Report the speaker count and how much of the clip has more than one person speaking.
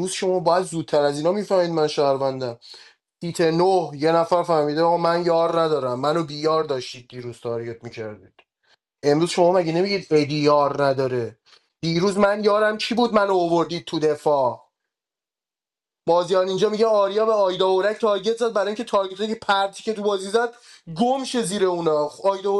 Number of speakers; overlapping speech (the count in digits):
1, no overlap